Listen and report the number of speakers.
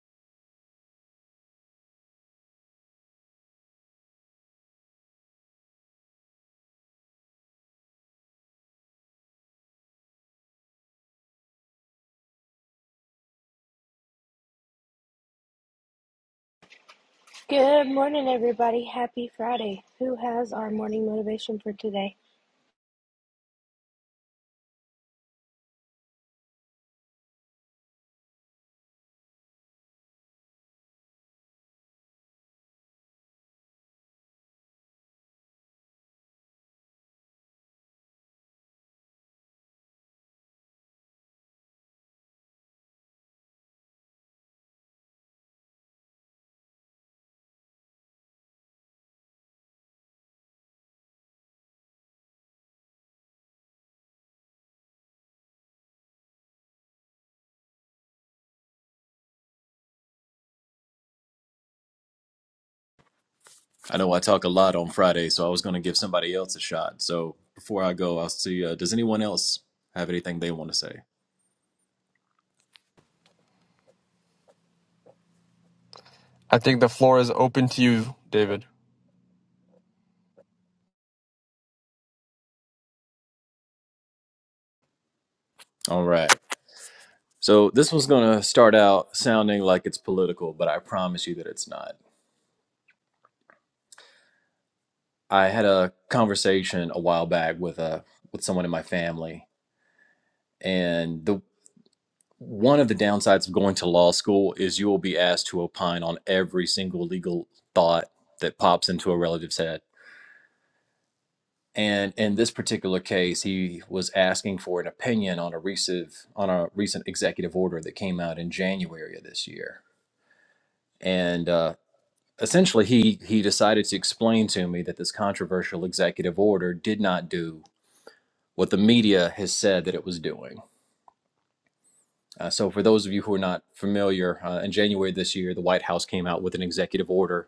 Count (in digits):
3